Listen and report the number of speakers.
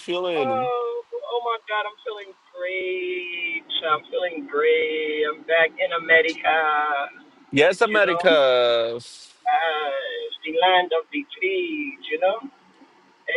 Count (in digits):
2